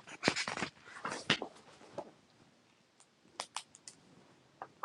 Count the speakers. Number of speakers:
zero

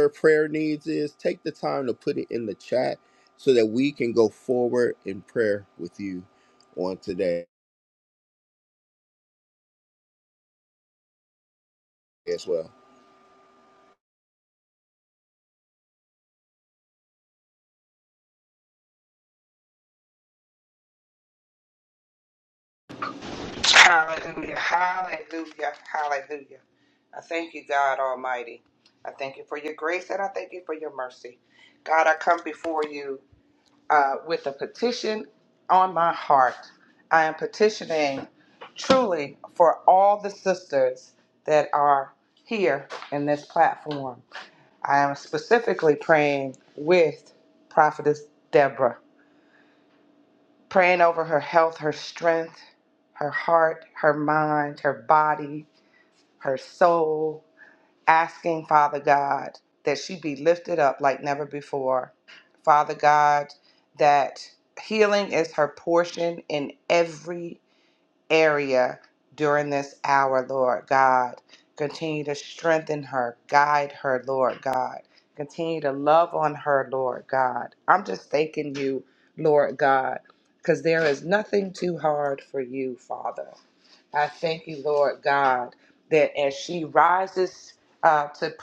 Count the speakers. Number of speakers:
two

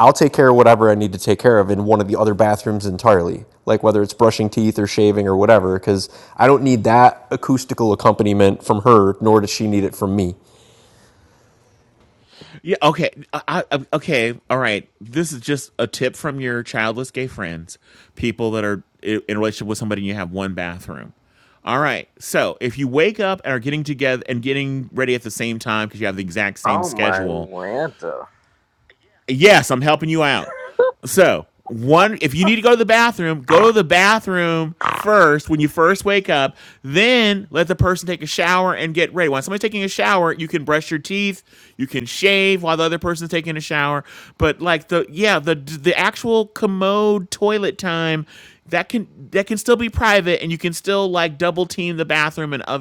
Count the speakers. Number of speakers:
three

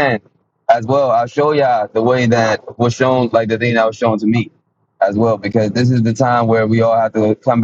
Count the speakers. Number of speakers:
one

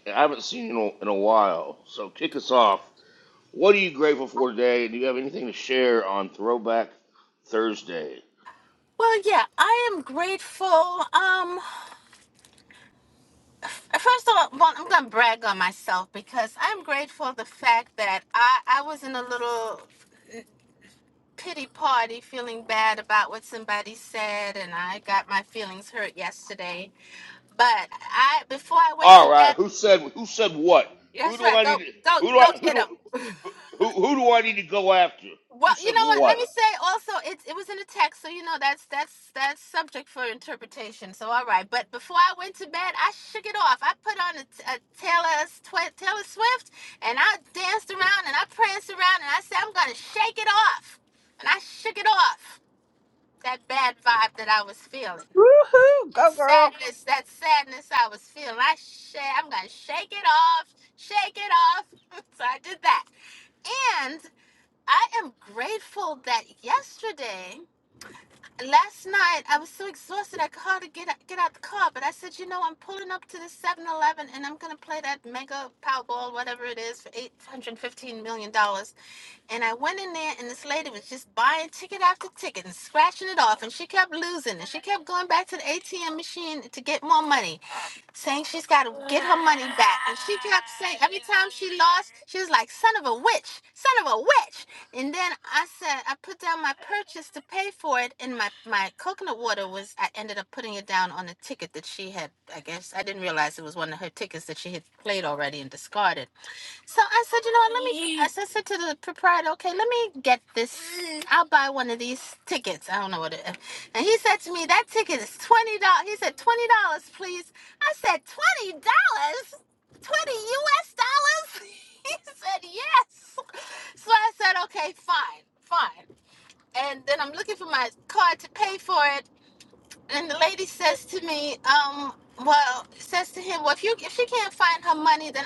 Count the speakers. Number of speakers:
three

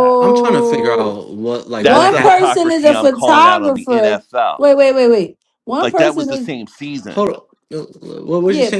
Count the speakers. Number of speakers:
three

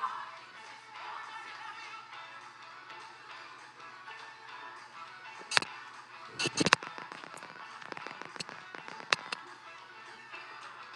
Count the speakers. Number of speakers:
zero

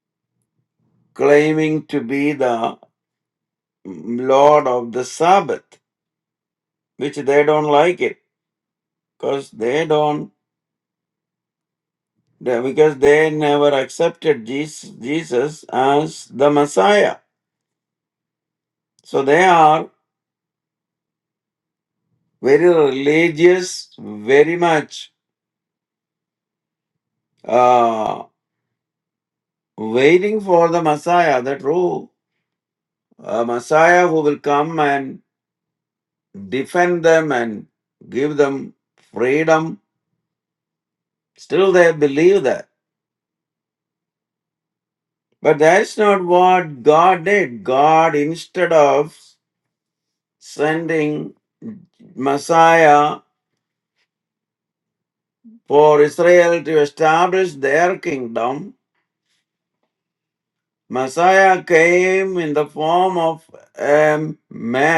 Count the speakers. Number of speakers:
one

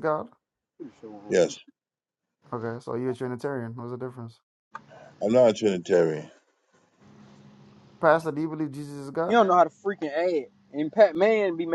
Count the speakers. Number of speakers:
three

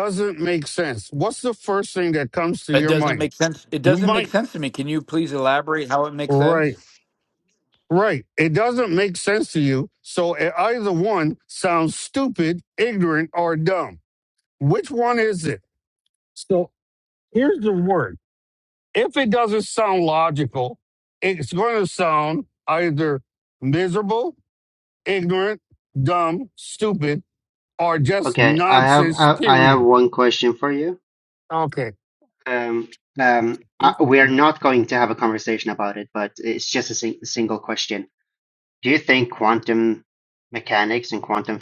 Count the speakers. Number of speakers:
three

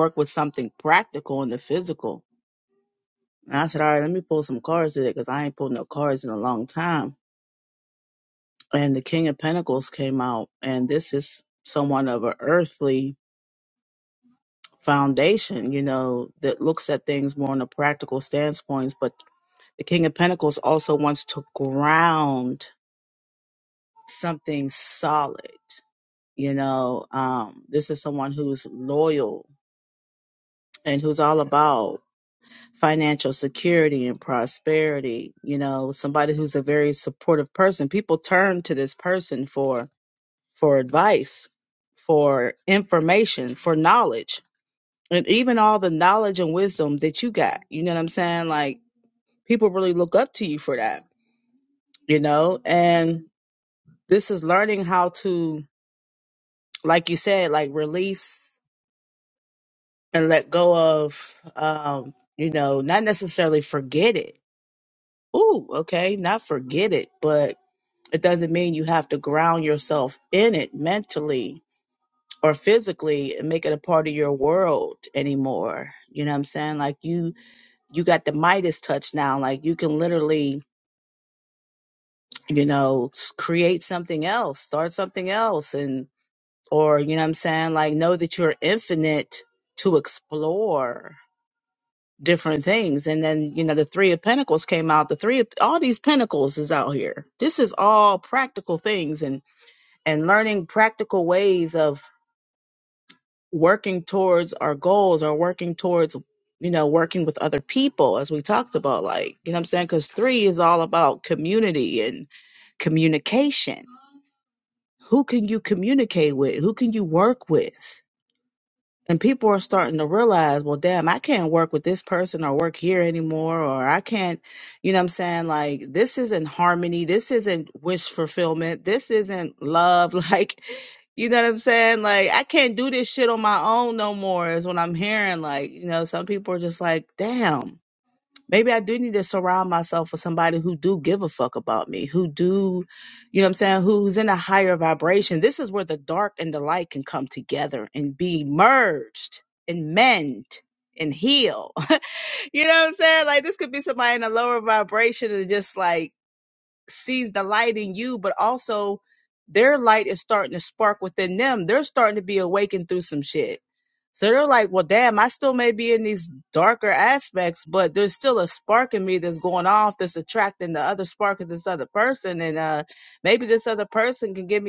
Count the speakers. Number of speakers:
one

